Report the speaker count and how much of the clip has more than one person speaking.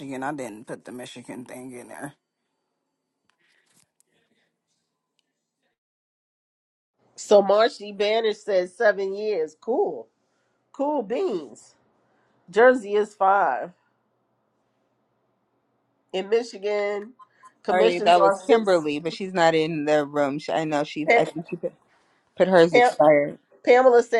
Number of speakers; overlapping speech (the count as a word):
three, about 7%